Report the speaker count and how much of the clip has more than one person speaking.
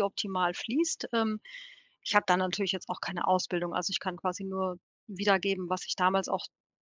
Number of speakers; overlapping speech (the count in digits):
1, no overlap